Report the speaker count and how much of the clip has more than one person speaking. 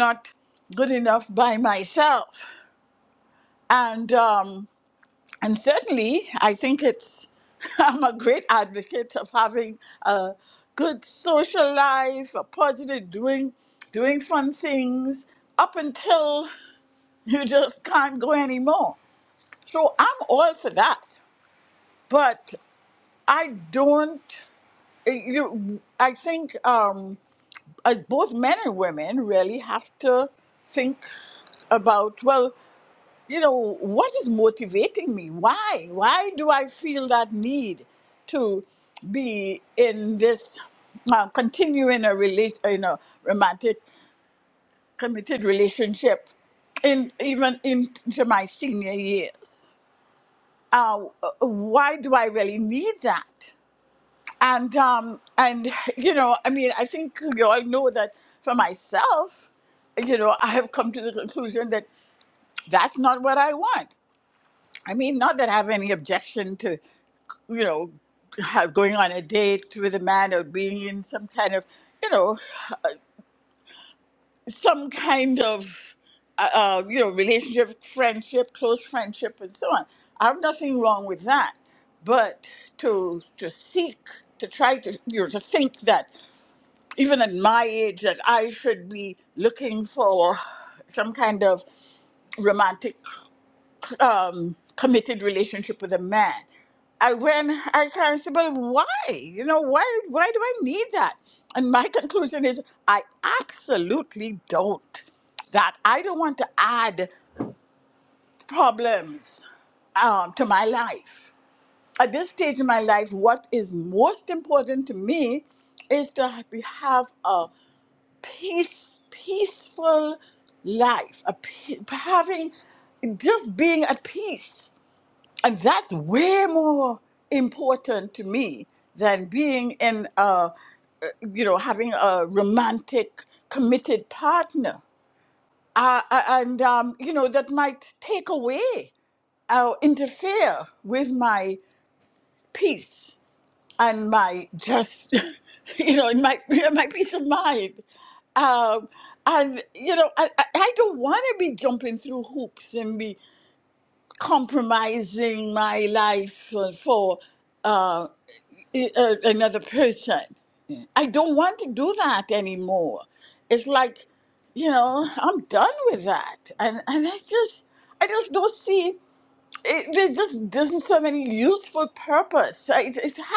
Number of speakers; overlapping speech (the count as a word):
one, no overlap